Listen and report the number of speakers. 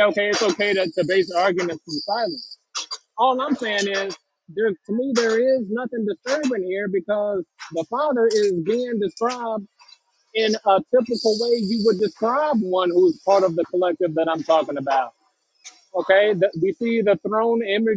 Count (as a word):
one